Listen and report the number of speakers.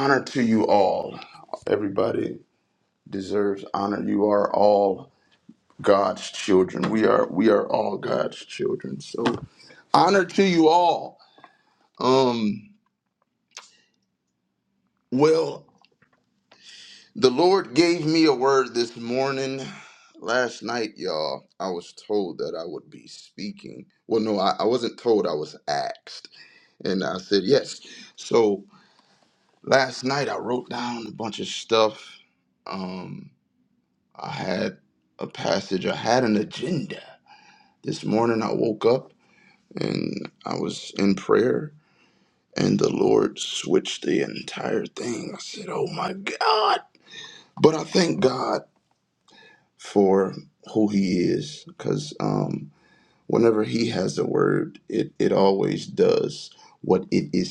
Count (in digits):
1